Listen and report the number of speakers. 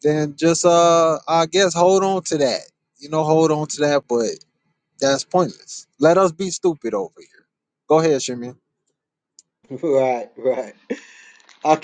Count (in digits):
2